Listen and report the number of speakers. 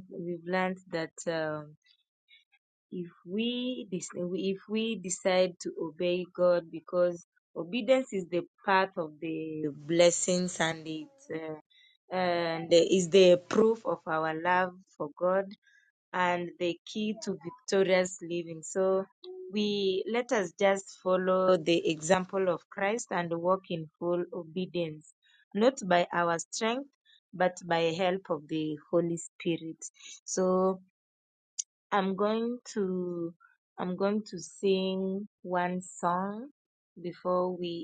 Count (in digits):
1